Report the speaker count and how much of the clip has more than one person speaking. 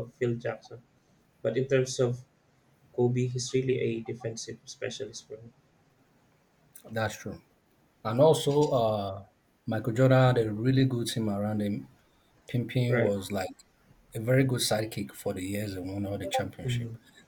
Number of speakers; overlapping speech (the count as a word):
two, about 3%